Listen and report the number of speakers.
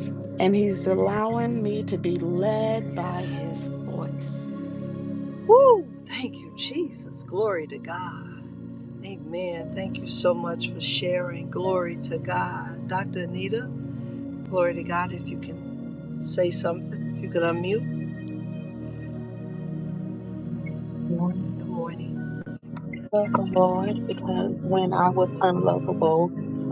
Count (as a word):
three